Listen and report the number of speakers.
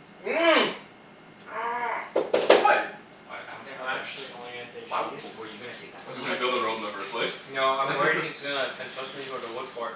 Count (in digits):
4